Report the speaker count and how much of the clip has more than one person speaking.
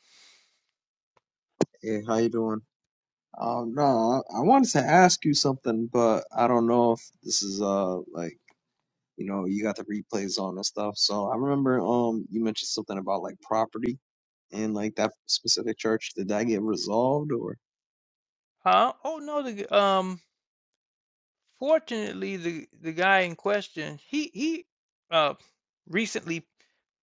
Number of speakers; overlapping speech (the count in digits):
2, no overlap